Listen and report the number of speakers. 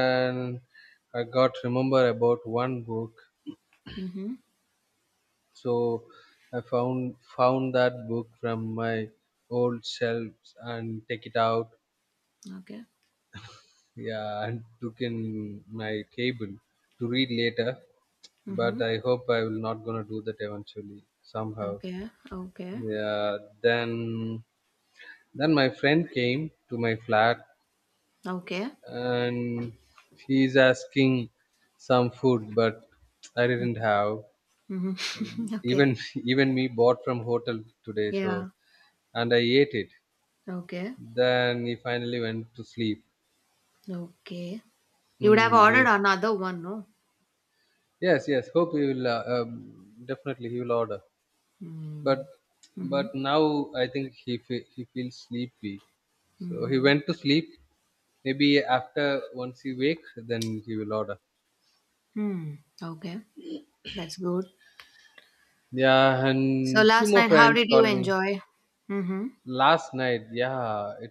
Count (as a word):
two